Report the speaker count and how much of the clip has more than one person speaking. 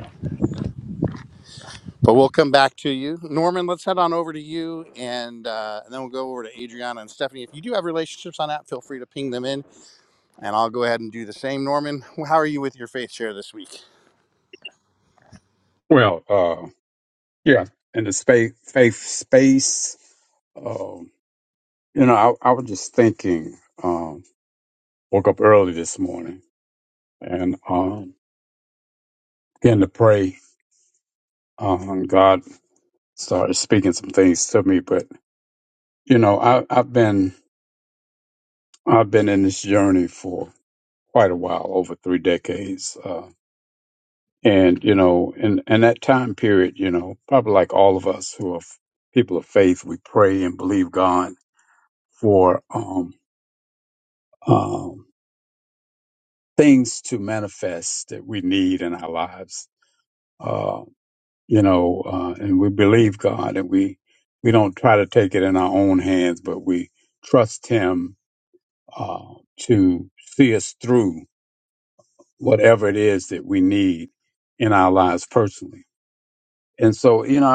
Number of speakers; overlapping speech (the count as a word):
two, no overlap